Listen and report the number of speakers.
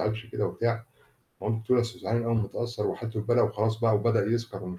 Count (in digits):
1